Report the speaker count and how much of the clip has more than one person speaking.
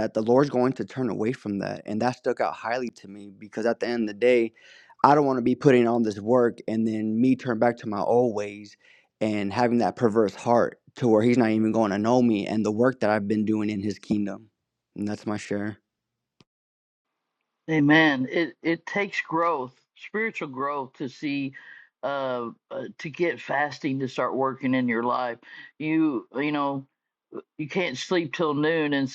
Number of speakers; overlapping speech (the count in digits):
2, no overlap